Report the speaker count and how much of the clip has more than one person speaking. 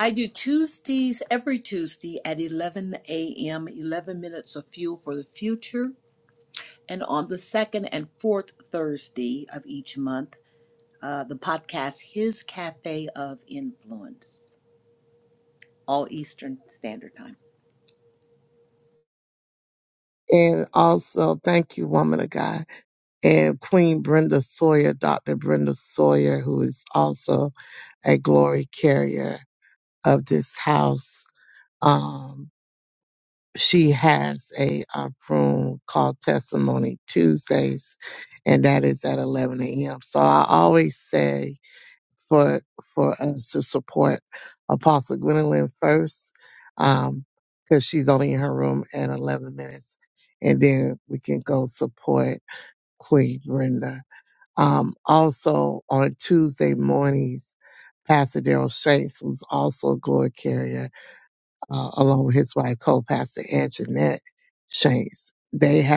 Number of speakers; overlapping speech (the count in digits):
2, no overlap